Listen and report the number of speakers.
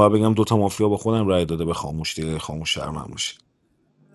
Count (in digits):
1